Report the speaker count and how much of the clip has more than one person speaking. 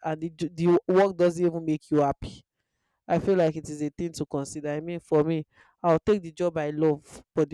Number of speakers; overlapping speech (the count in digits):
1, no overlap